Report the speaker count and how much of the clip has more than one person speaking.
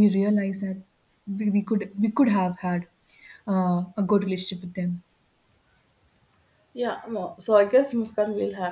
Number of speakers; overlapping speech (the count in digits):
2, no overlap